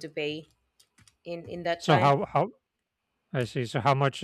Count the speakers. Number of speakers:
2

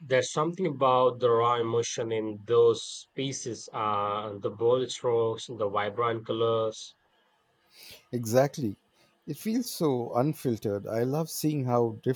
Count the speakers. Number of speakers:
2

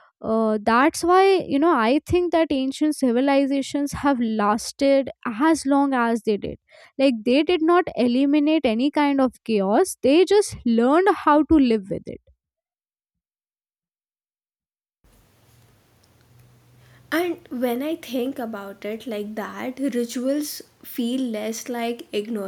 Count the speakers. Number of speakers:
2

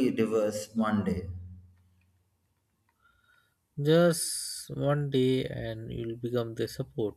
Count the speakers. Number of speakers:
2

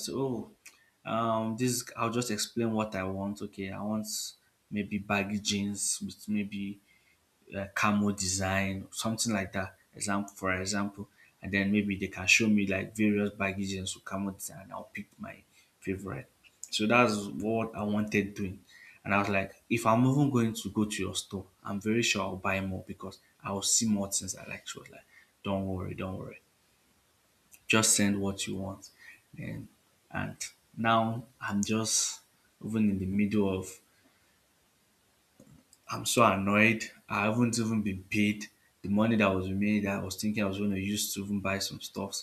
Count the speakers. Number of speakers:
1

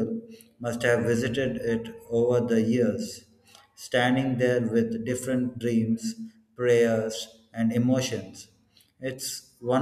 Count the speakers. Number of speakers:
1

